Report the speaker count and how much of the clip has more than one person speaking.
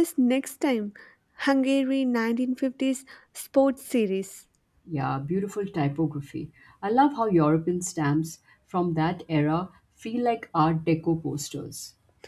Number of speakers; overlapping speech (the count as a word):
two, no overlap